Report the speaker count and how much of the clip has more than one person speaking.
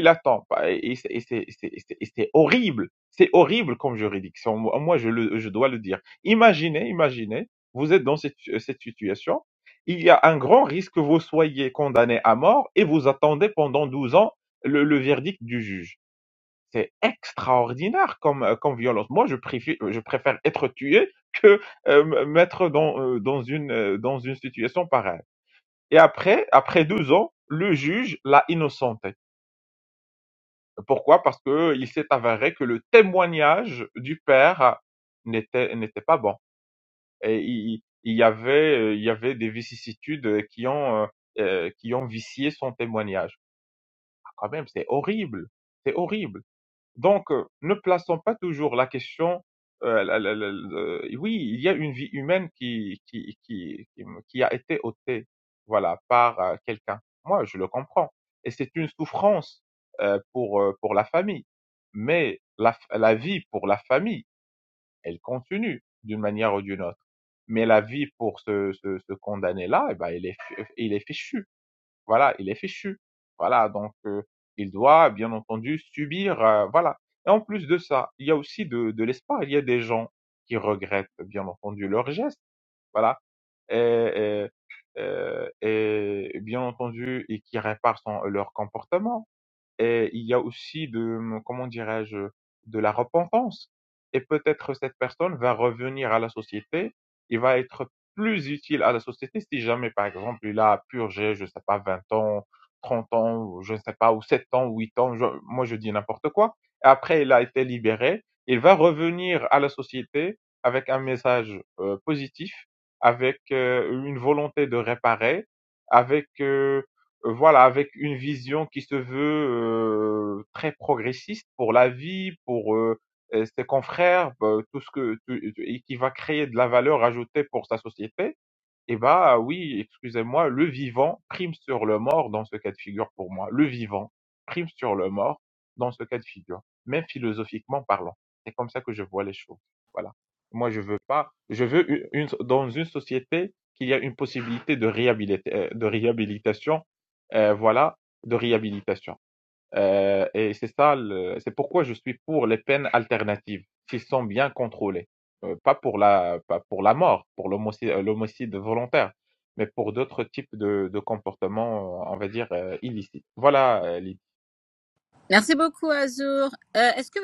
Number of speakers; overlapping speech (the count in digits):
2, no overlap